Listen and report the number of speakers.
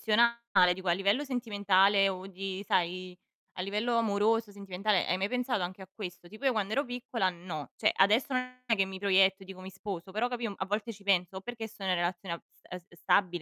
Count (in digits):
1